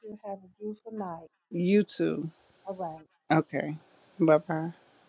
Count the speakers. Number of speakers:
2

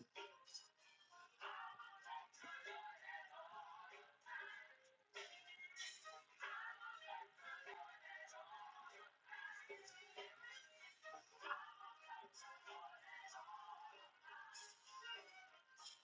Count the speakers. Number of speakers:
0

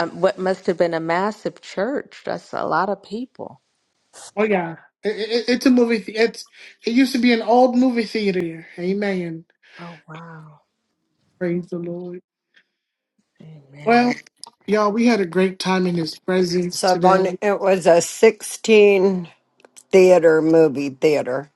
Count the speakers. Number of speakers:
3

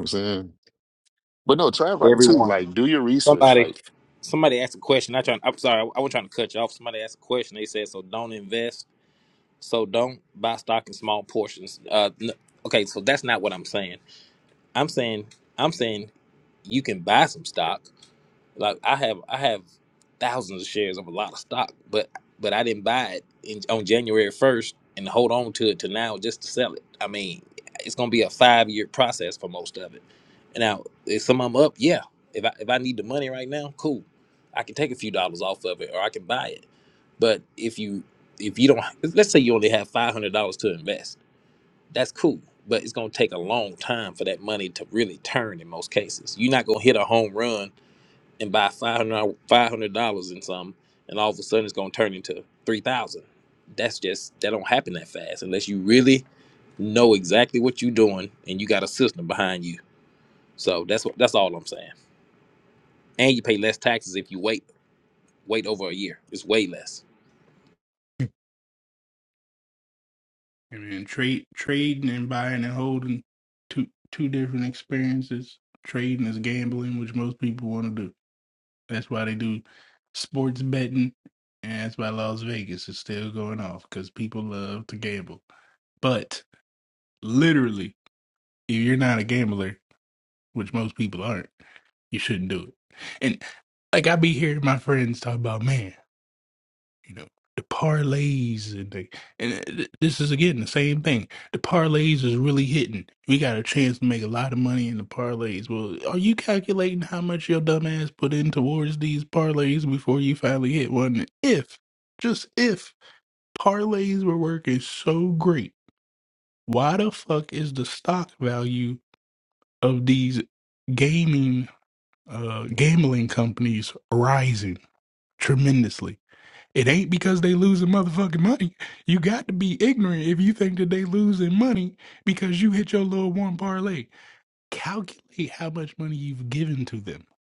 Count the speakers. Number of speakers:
3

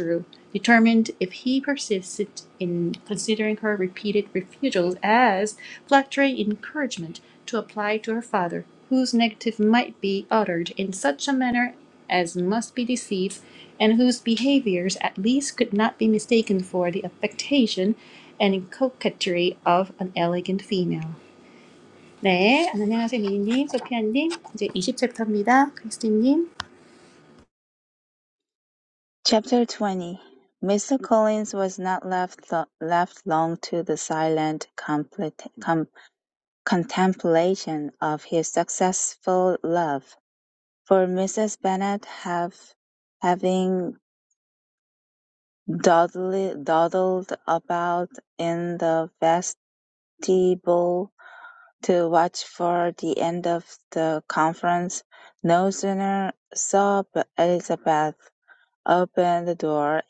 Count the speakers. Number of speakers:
2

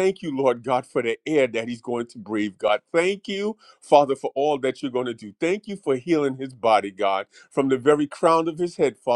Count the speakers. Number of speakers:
1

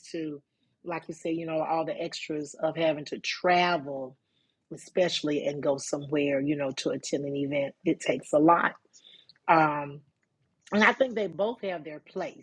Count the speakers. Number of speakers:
1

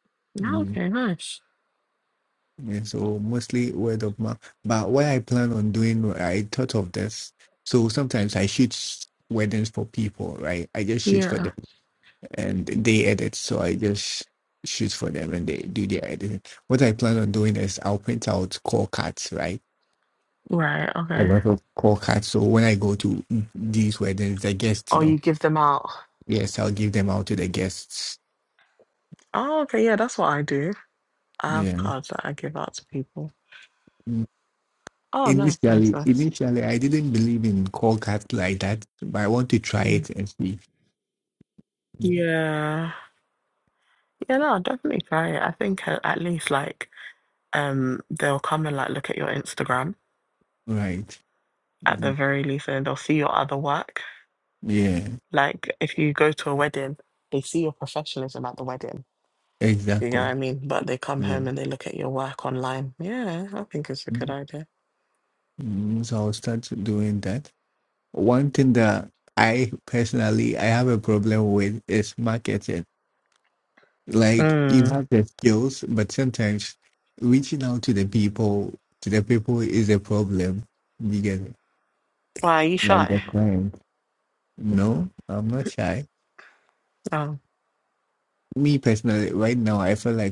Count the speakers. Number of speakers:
2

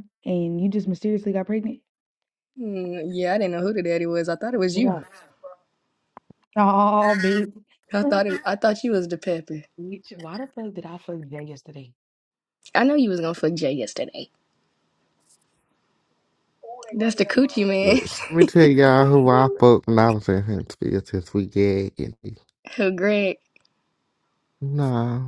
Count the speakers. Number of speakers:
3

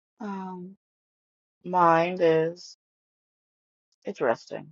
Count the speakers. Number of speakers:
1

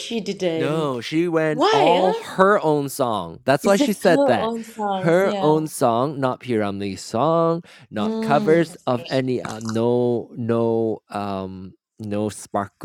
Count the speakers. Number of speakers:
2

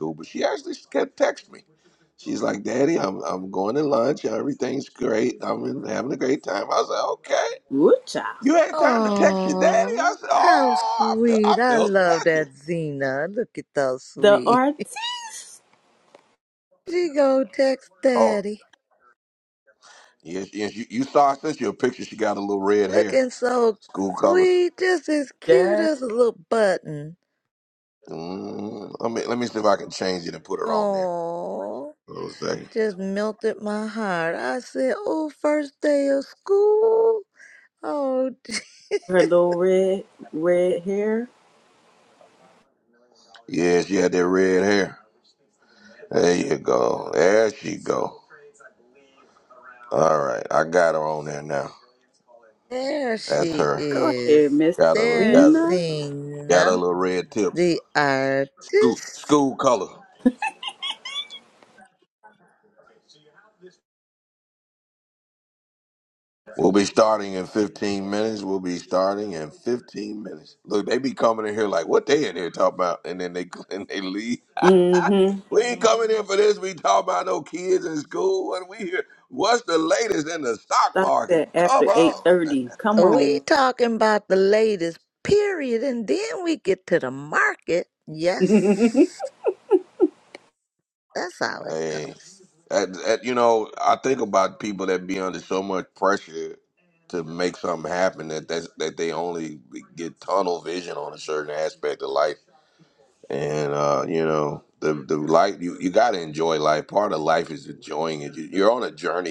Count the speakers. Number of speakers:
3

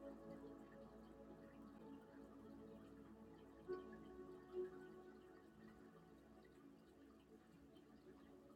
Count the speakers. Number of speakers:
0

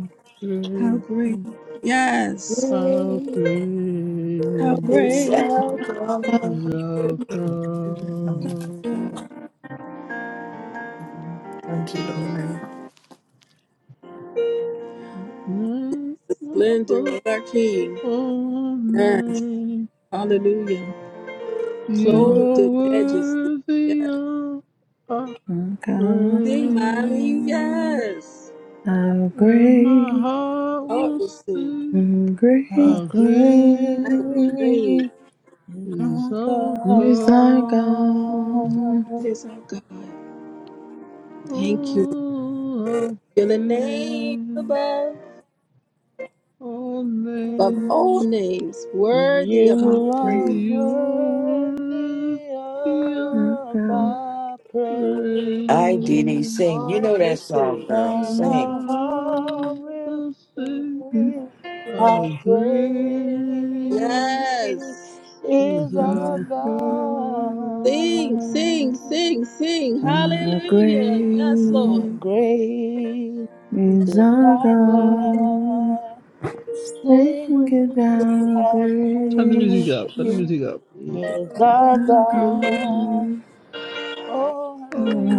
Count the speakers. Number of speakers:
5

